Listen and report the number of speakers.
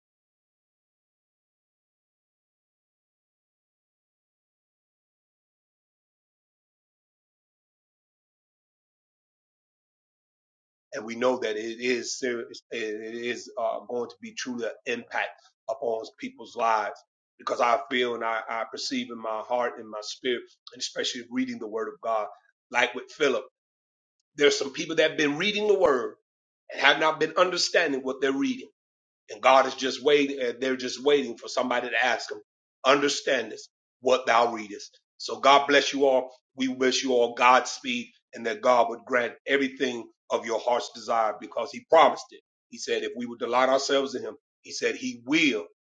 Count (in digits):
1